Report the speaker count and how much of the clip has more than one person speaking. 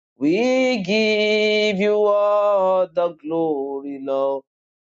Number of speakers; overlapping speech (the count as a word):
one, no overlap